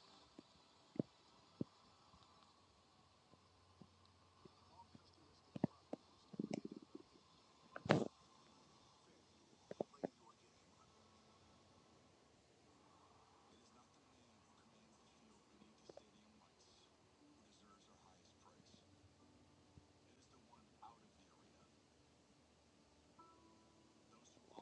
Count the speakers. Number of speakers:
0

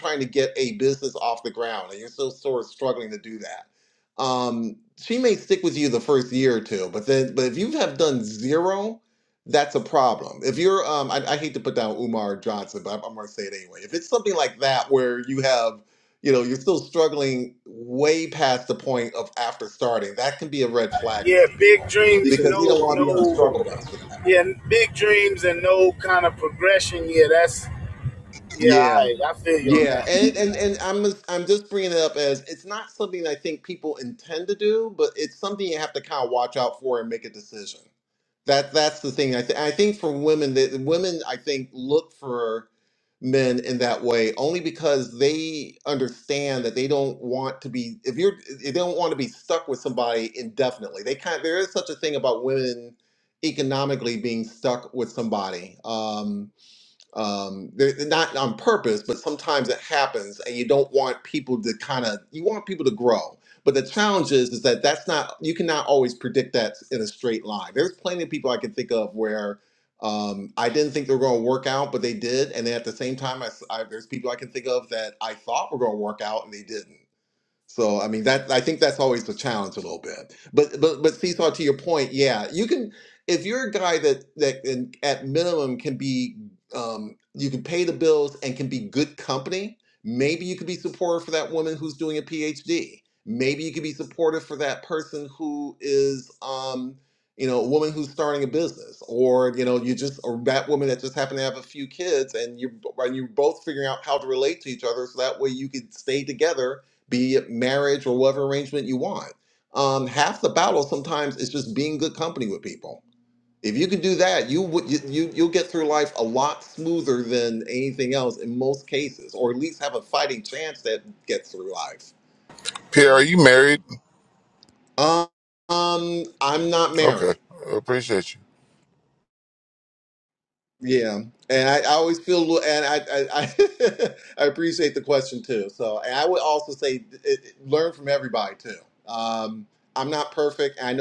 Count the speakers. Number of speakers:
3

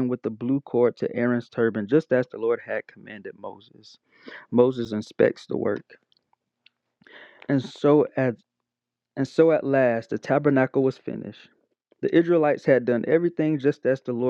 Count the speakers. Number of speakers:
1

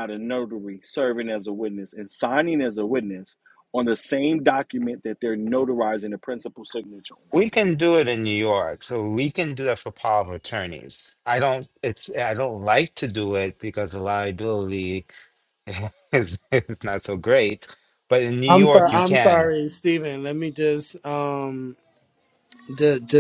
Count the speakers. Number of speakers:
3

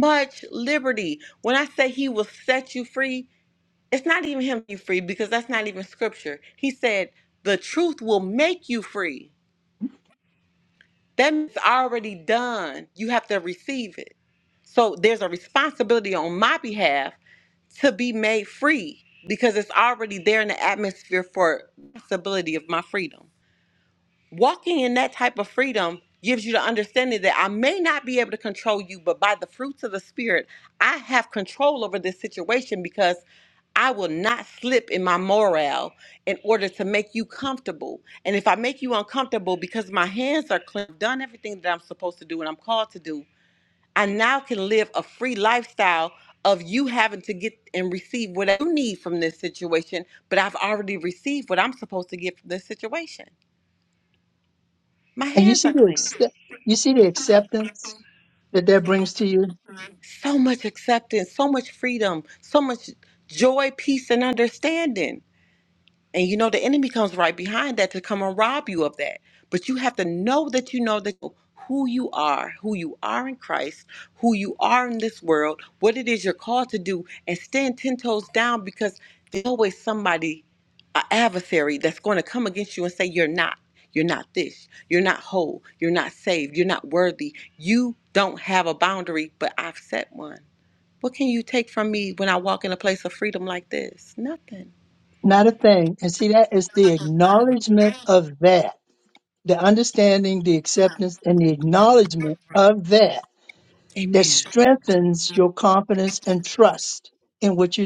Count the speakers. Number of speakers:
2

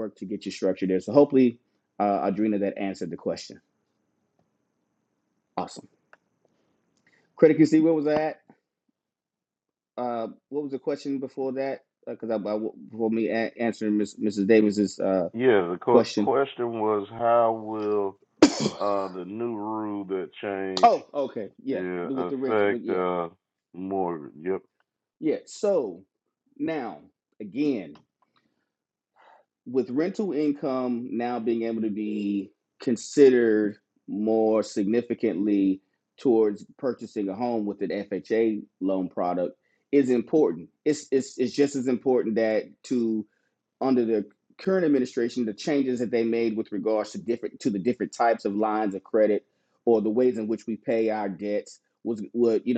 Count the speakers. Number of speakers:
2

